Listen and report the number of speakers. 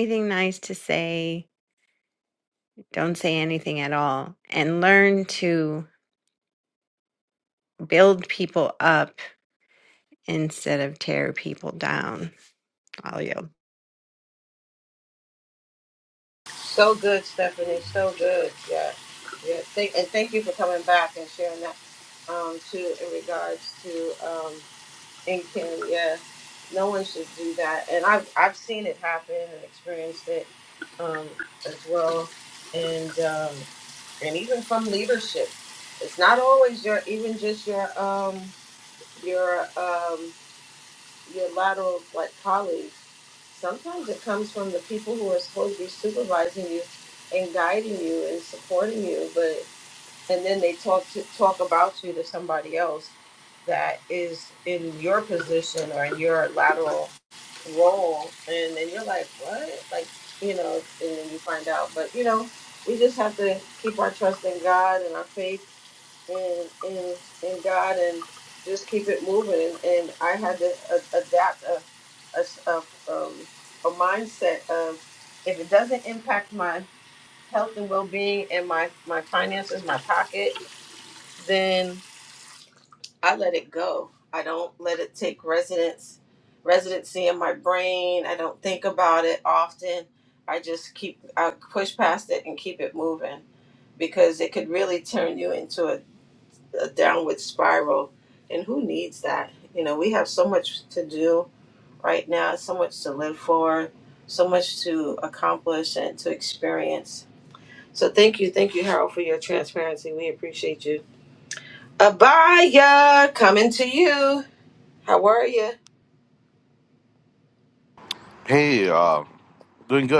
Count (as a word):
three